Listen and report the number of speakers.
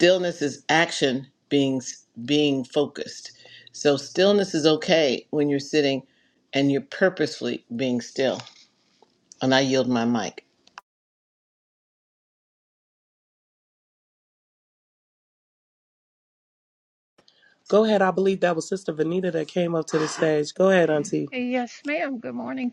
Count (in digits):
3